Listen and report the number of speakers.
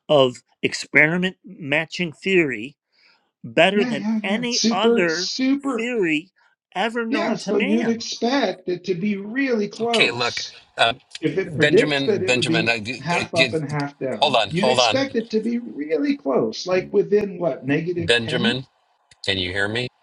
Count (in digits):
3